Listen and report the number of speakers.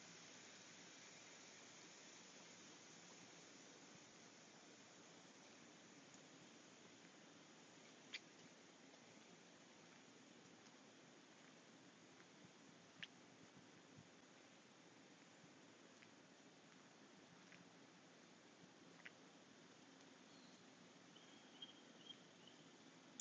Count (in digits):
0